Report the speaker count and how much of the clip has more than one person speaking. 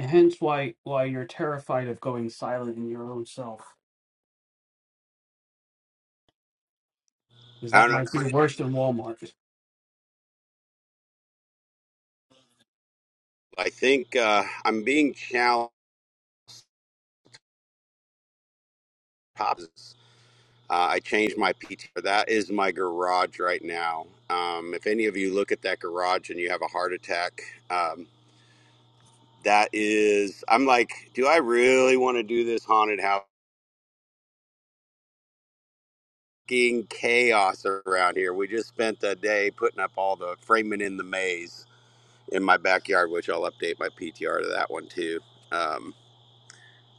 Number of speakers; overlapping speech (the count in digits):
2, about 1%